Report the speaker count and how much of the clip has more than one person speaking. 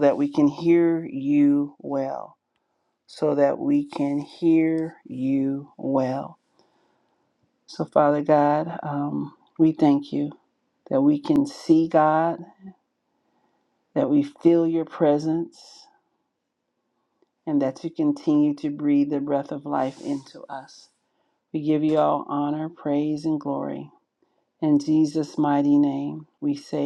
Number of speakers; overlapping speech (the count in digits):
1, no overlap